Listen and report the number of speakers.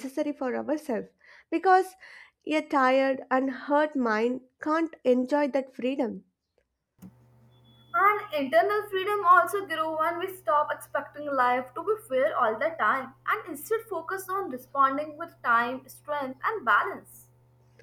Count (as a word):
two